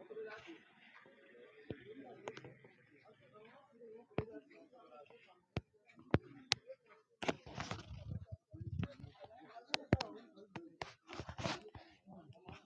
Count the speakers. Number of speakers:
zero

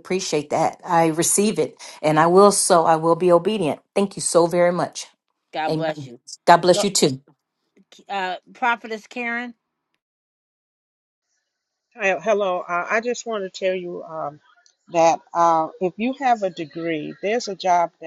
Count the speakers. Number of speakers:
three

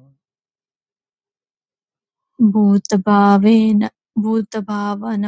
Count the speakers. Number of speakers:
one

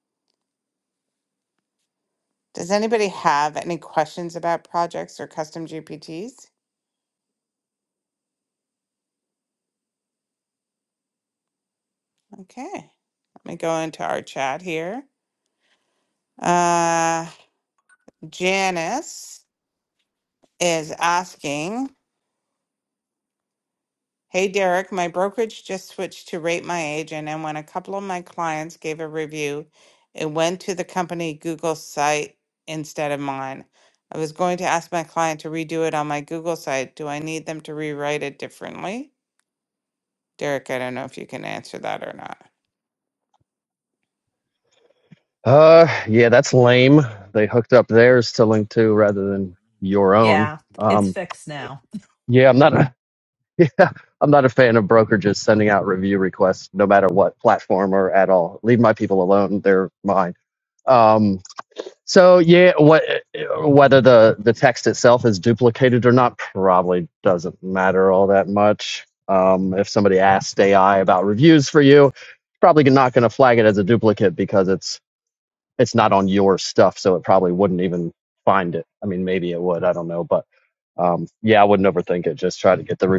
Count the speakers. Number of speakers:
three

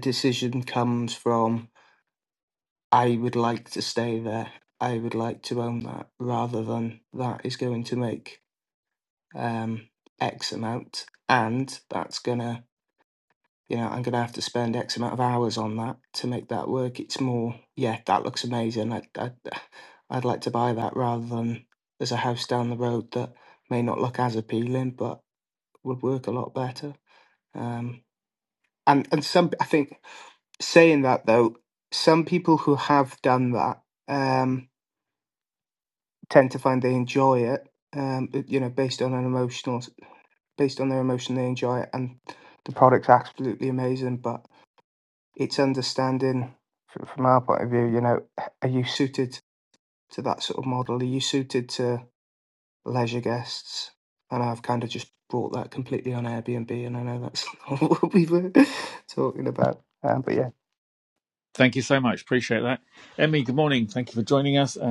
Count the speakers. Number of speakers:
two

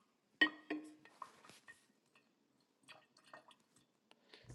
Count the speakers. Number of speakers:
zero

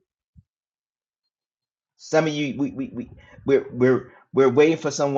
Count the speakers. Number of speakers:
one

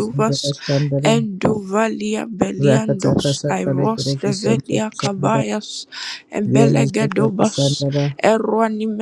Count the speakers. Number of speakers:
two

